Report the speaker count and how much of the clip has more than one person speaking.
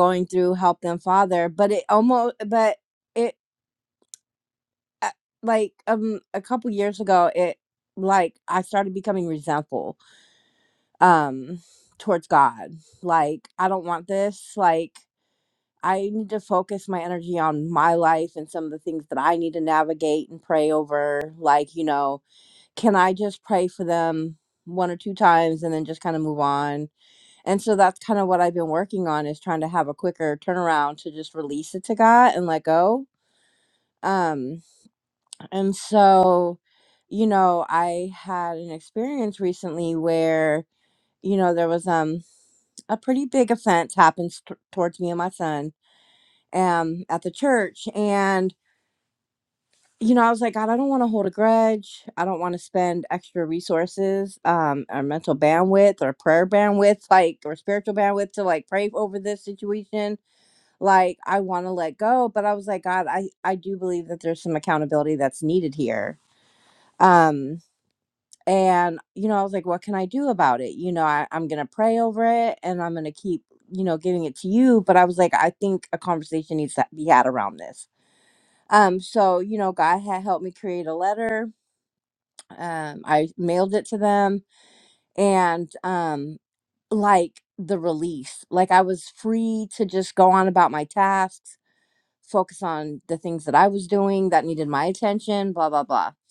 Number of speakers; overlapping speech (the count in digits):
1, no overlap